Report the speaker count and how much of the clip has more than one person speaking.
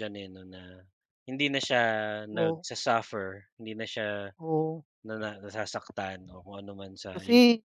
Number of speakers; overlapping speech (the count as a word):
two, about 7%